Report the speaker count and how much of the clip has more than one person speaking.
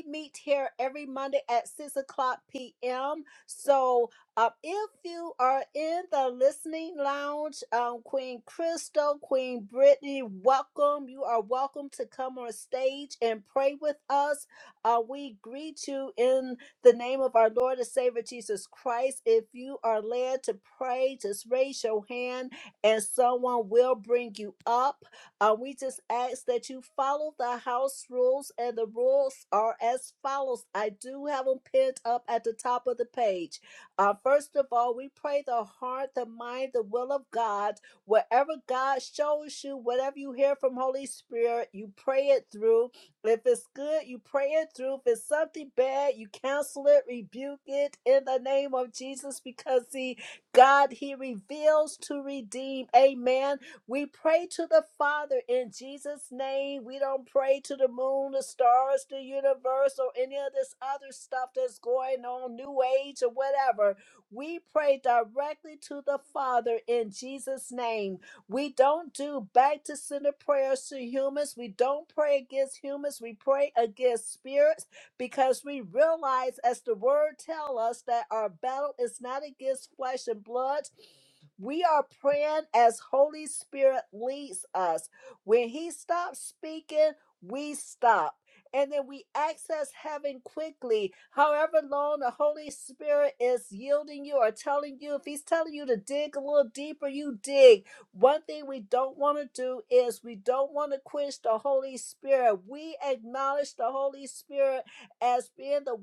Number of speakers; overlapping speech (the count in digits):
1, no overlap